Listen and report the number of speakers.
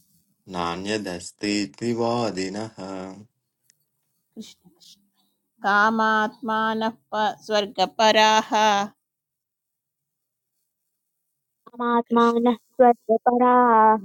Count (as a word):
three